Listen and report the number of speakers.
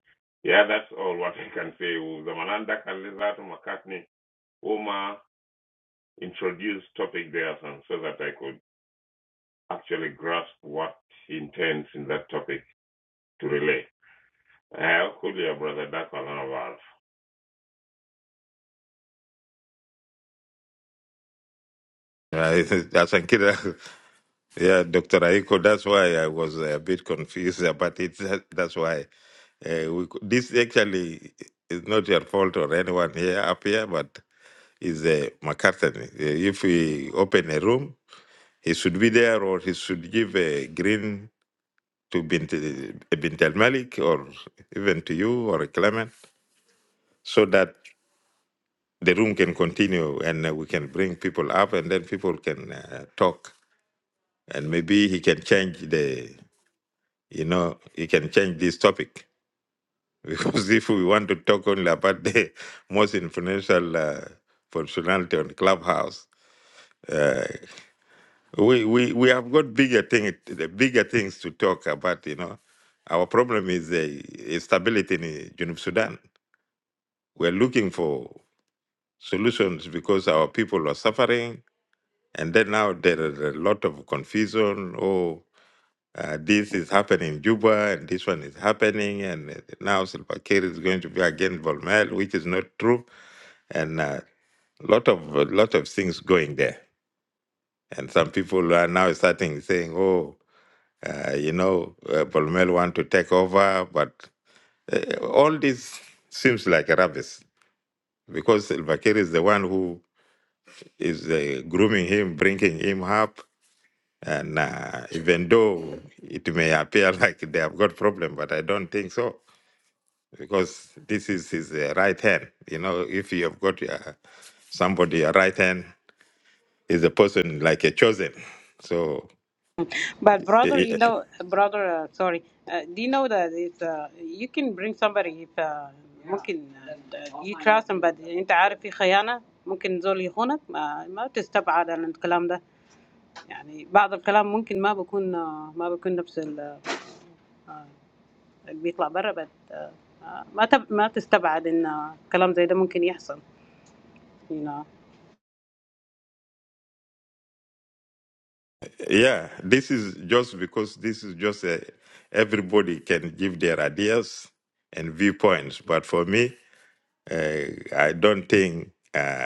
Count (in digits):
3